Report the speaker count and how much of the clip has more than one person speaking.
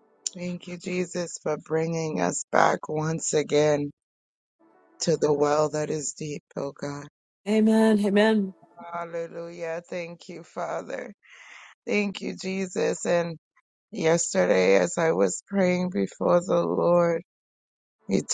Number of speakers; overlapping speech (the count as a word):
two, no overlap